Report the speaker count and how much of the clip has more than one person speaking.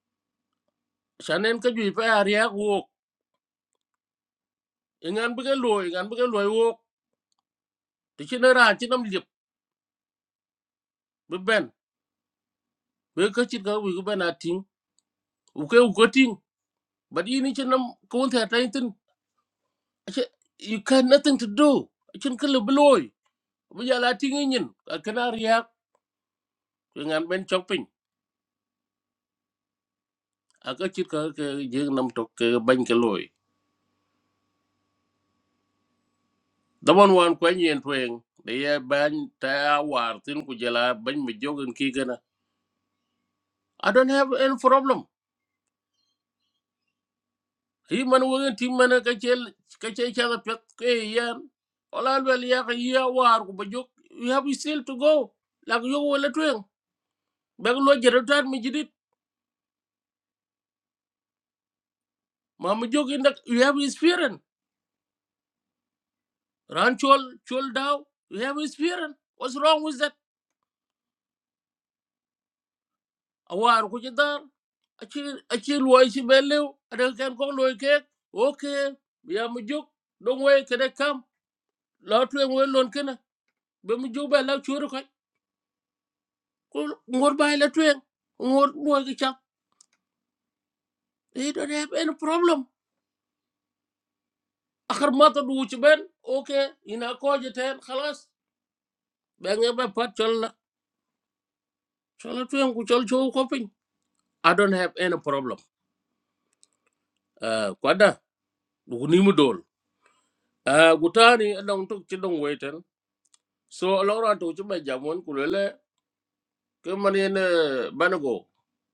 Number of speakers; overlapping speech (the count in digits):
1, no overlap